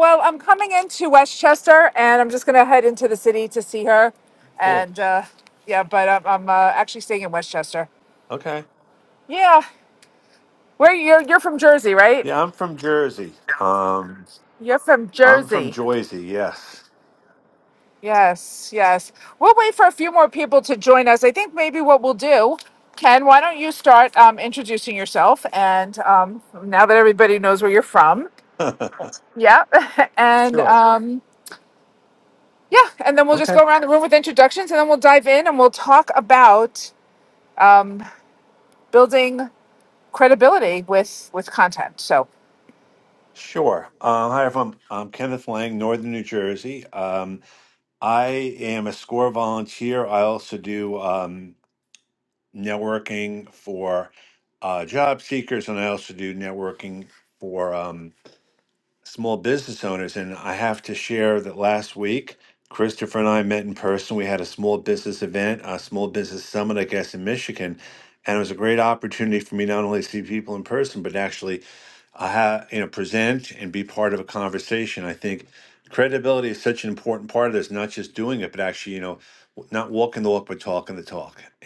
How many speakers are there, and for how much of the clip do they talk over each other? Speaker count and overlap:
2, about 2%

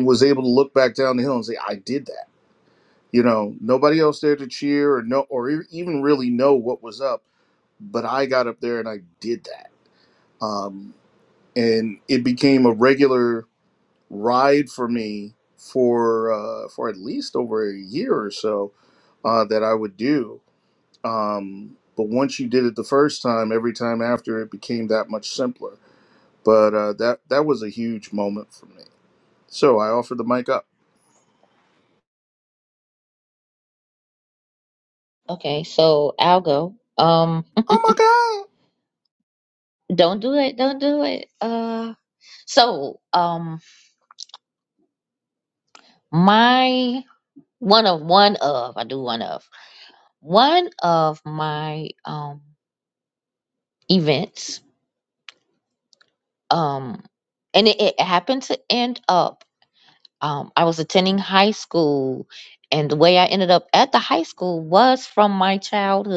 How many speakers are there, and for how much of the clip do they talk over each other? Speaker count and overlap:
2, no overlap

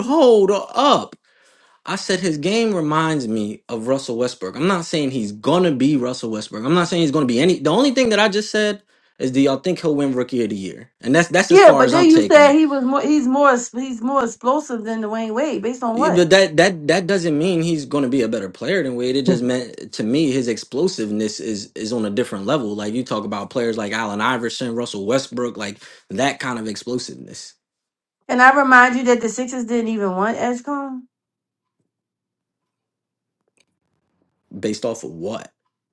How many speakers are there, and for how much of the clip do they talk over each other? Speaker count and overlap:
2, about 4%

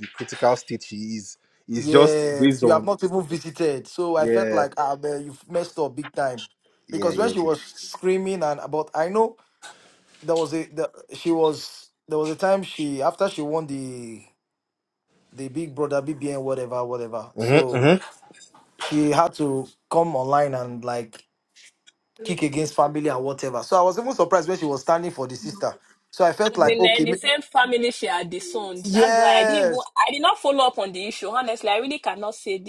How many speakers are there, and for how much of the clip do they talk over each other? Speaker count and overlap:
3, about 13%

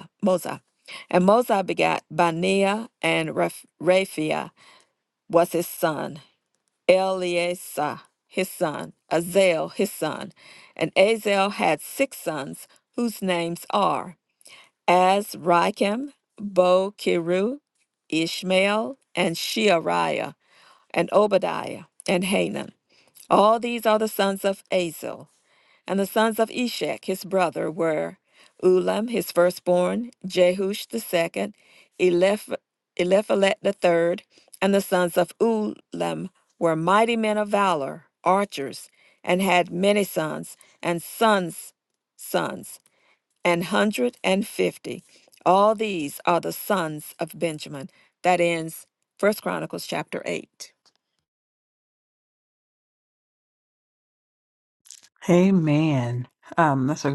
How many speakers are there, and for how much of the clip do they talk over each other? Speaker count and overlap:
2, no overlap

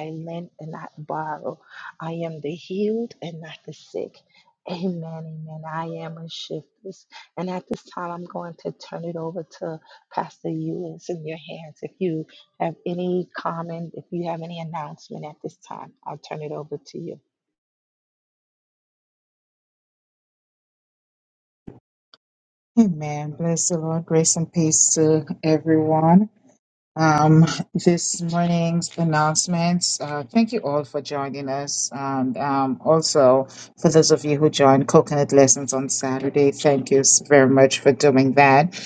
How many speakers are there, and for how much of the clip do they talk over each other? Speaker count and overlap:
2, no overlap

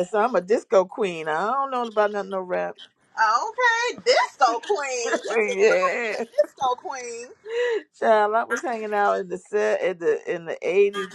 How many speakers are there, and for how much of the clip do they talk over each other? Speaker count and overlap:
2, about 8%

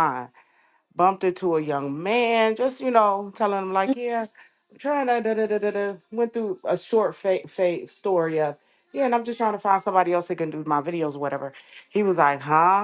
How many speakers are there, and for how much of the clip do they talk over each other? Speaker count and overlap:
1, no overlap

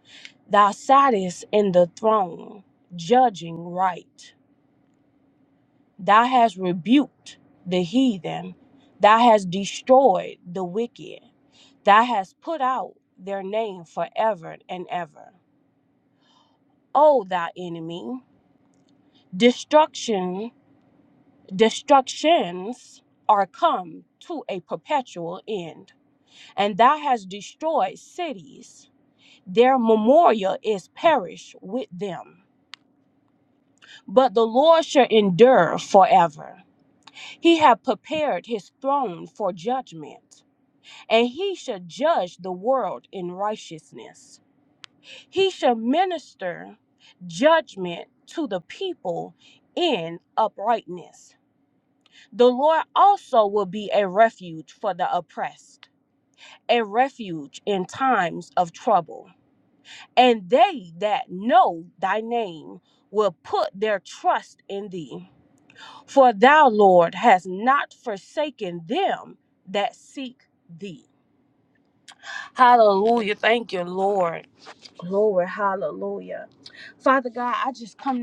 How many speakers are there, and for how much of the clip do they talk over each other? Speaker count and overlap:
1, no overlap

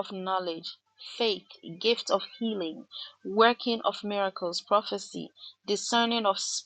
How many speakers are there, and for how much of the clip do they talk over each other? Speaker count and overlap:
1, no overlap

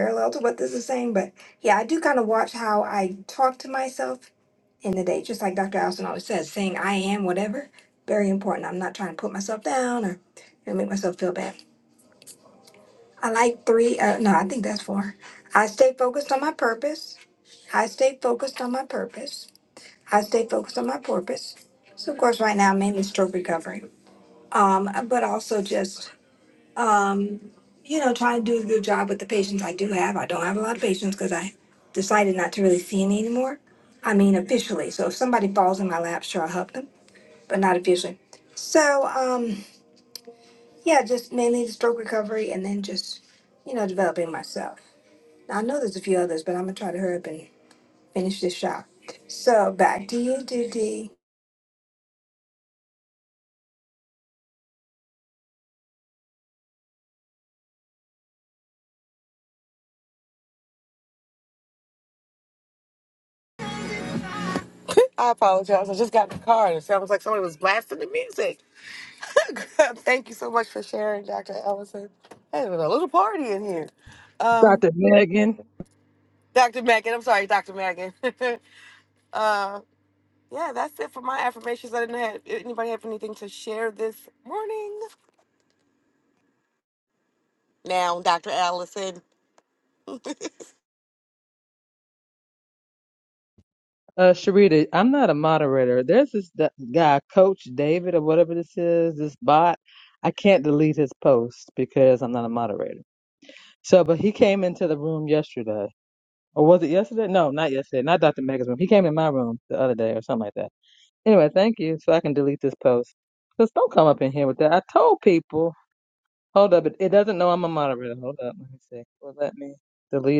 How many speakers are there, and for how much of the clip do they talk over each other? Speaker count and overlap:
3, under 1%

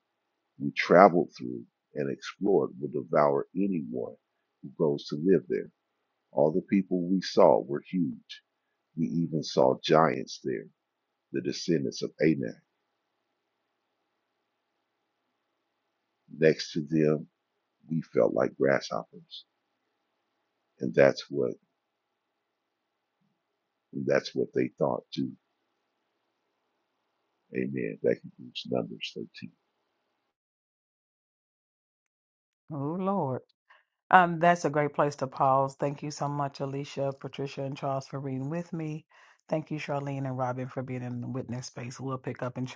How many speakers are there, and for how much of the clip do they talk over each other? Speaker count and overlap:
2, no overlap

